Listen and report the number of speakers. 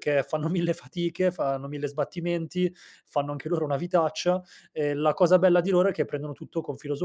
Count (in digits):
1